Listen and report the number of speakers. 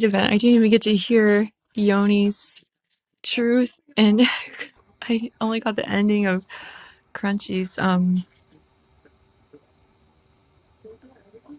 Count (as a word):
one